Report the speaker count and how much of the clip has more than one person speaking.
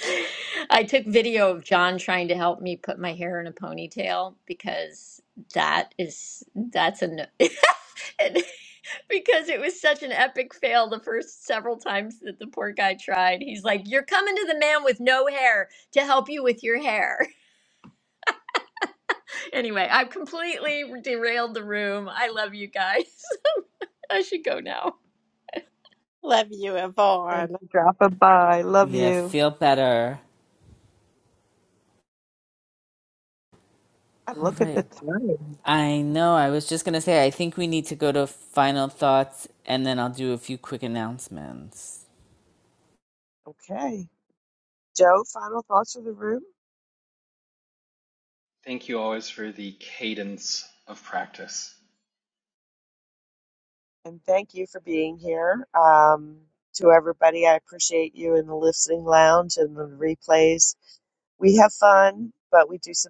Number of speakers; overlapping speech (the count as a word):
five, about 2%